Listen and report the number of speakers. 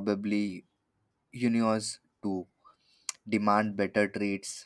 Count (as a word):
one